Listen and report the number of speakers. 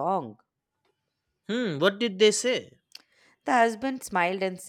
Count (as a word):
two